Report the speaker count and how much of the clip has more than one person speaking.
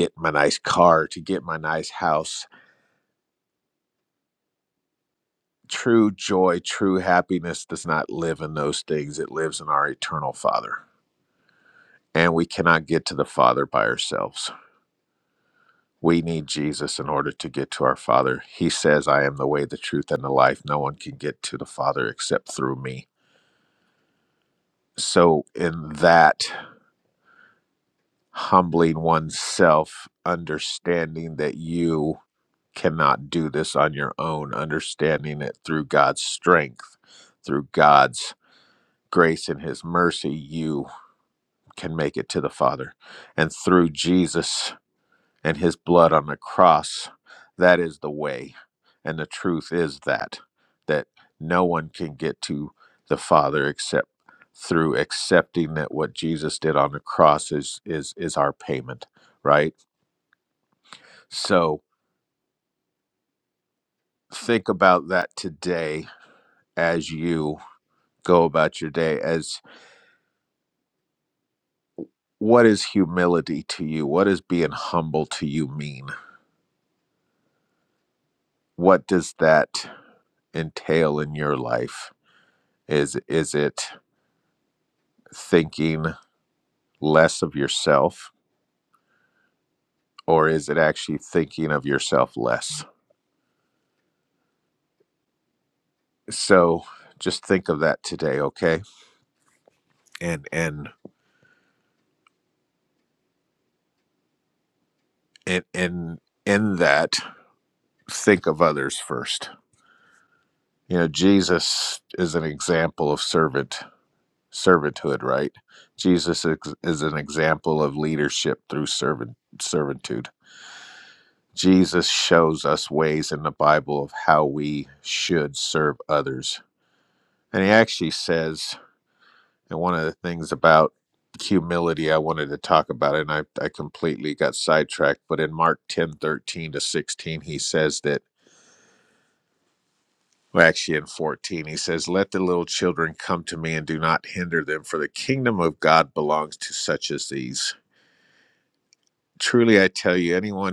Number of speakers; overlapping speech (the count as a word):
one, no overlap